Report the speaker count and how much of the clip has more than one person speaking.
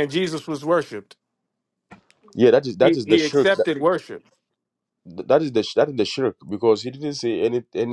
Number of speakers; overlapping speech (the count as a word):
two, about 9%